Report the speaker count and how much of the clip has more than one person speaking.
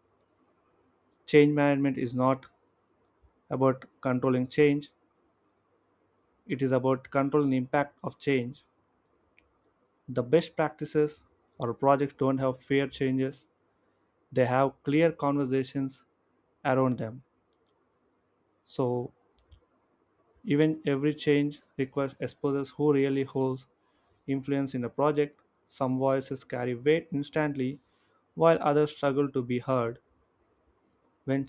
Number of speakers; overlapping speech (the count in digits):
1, no overlap